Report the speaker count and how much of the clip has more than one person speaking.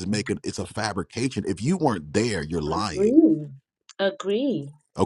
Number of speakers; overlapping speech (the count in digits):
2, about 7%